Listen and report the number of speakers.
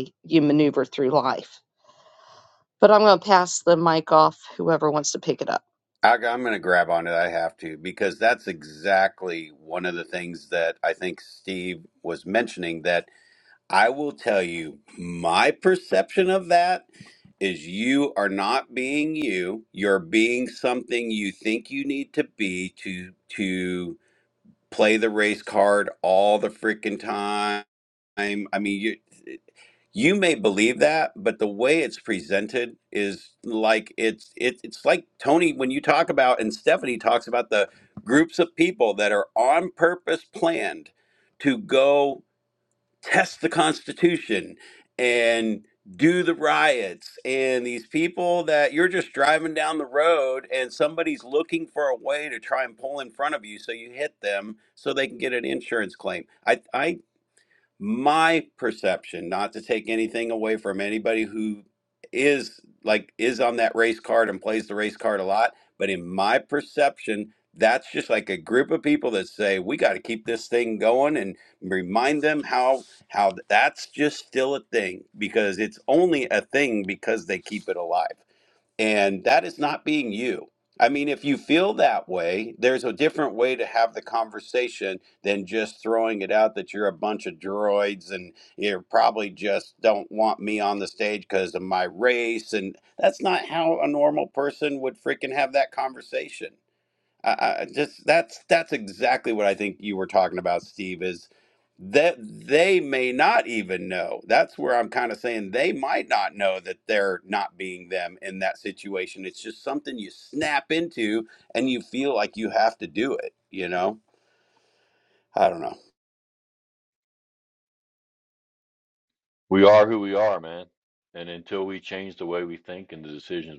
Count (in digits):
3